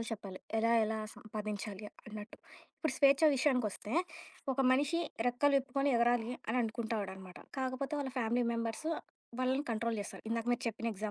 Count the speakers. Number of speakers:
1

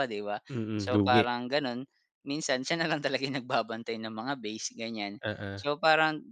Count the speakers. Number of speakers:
2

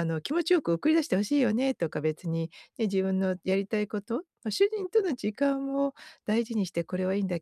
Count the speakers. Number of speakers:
1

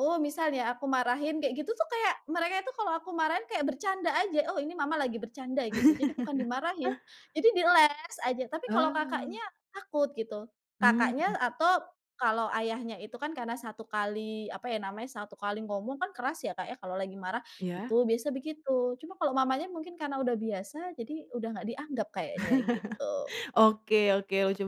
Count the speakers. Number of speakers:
2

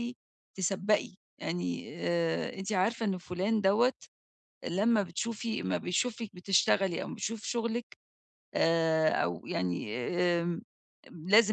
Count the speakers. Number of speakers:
1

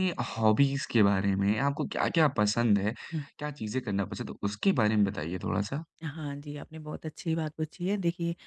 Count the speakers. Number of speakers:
2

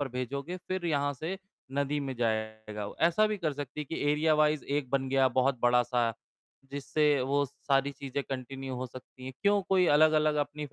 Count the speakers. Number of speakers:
1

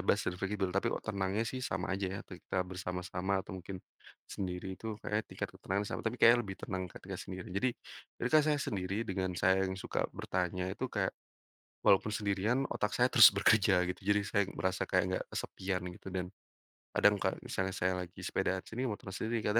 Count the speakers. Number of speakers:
1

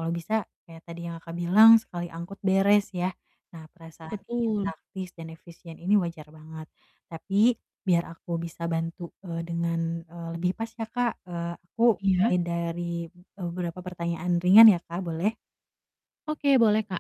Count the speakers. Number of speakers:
2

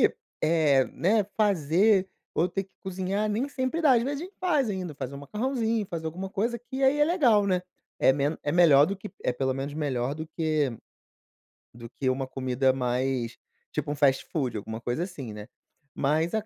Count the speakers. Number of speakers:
1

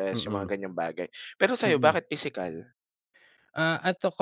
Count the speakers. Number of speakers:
2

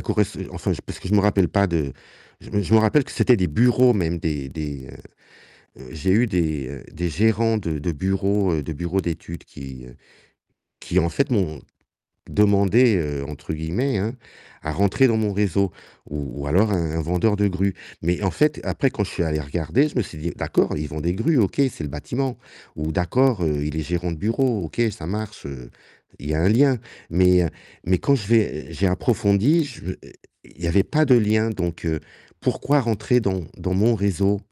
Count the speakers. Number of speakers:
1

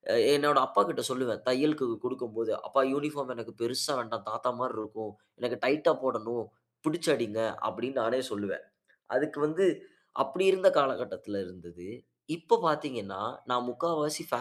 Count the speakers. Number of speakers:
1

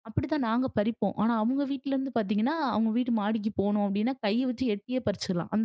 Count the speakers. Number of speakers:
1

